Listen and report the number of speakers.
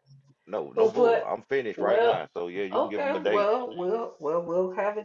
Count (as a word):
two